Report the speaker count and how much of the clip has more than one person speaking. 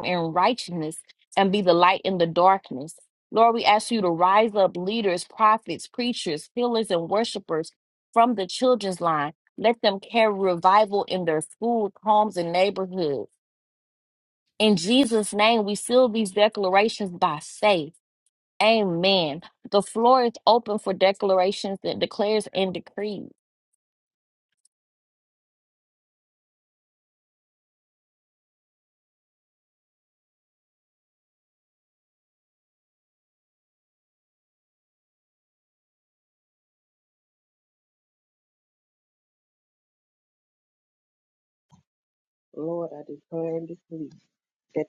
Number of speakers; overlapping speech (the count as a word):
two, no overlap